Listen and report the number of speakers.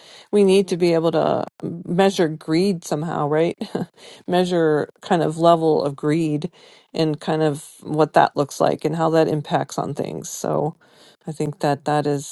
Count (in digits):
1